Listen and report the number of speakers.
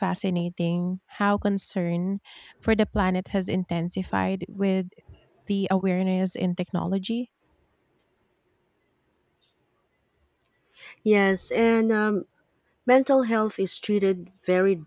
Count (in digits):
2